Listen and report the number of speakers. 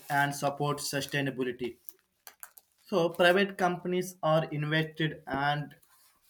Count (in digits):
1